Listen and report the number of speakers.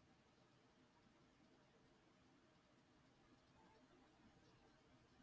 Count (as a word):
zero